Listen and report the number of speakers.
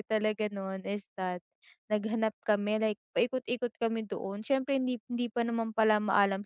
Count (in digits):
1